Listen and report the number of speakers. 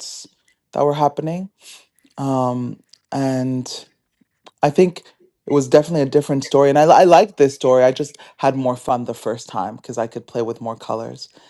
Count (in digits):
1